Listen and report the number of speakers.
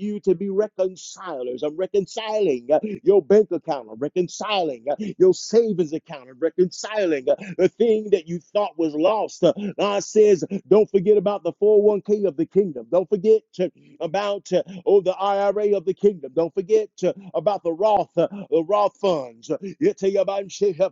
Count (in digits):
1